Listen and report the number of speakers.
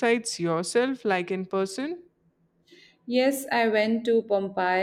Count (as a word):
two